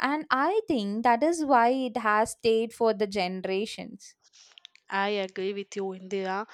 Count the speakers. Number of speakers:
2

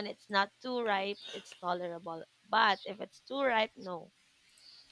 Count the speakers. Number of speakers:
1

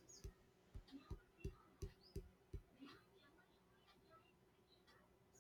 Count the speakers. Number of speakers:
0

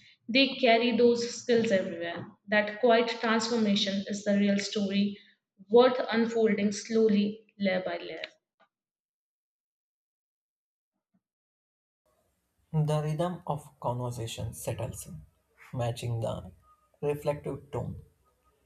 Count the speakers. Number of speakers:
2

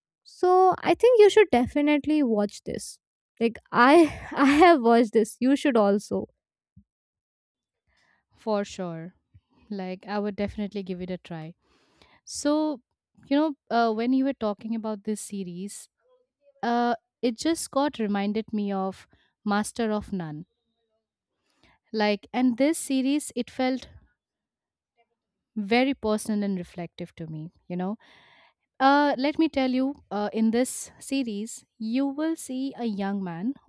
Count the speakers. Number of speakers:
2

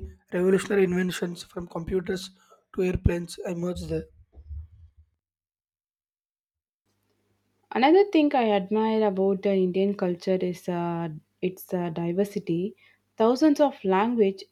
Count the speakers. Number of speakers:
2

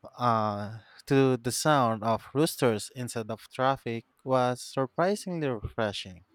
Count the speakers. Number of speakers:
1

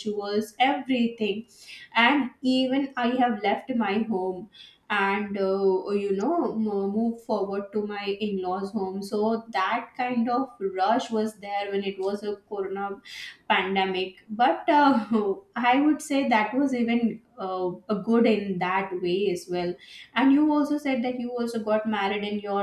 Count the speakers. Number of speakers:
1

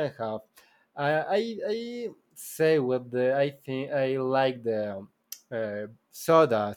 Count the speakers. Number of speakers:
1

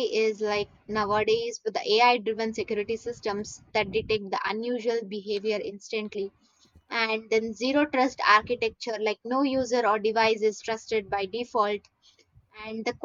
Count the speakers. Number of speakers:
1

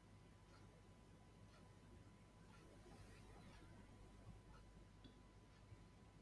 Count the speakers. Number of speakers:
0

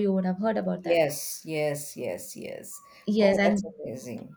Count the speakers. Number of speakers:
2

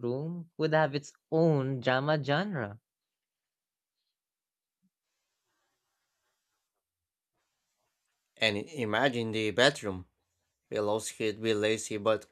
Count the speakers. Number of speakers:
2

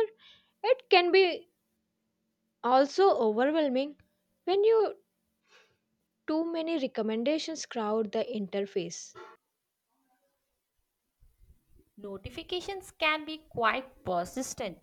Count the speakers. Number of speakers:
2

